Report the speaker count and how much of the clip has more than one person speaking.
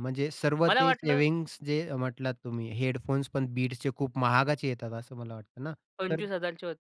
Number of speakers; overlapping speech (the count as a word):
two, about 11%